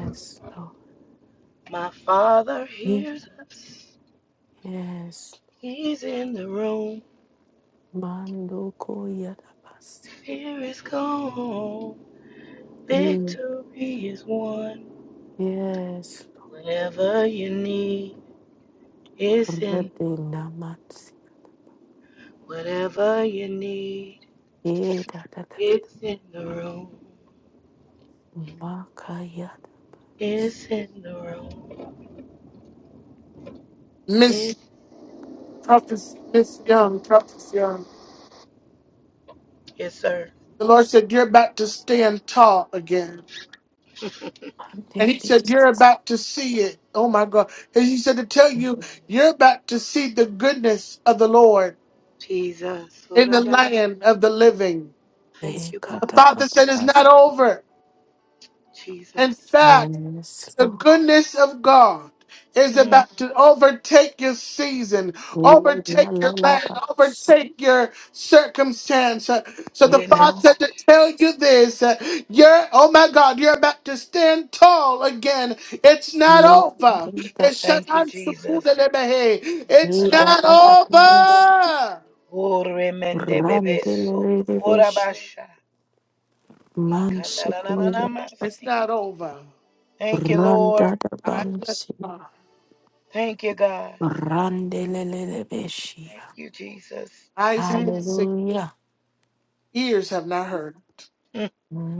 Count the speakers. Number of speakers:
3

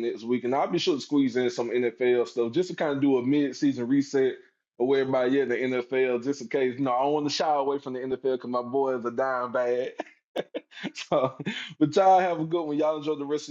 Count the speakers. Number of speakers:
1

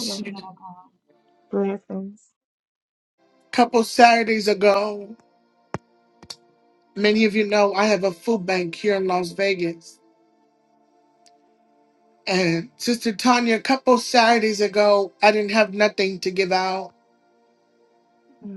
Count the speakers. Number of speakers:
2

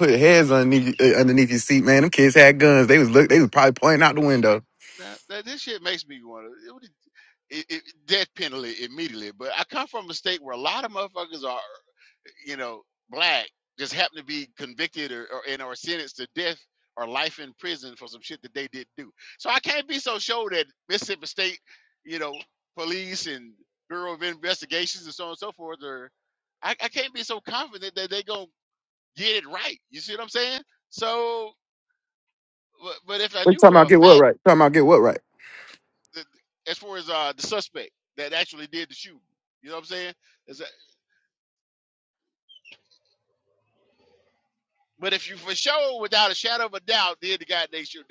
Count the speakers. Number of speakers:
2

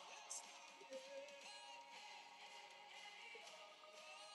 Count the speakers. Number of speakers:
0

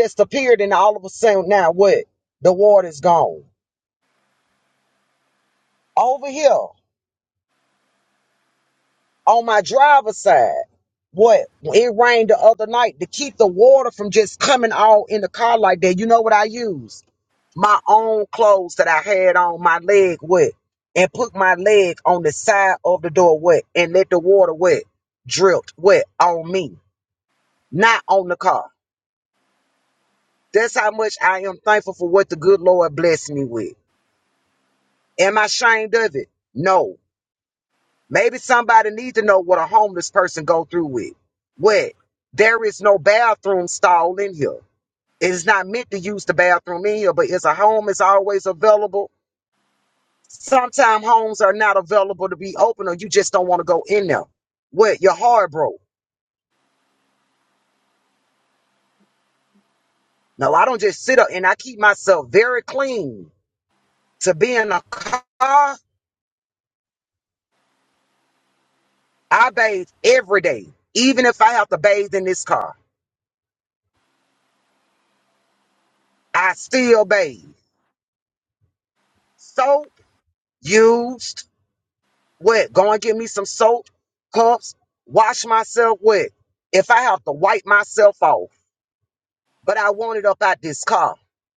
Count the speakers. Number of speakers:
1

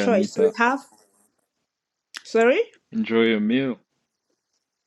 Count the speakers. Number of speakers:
2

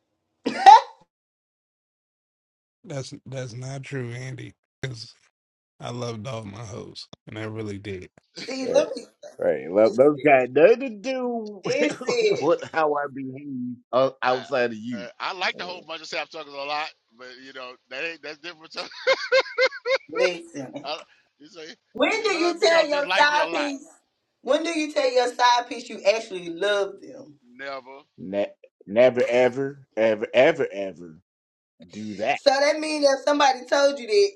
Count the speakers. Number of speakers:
4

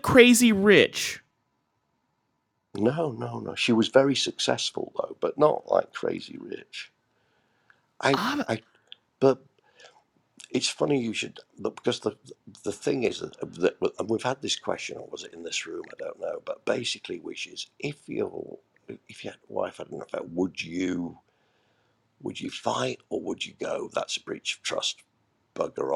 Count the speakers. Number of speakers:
2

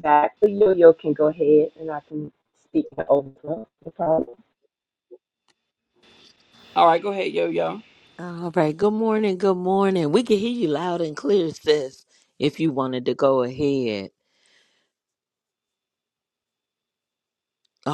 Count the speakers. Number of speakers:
3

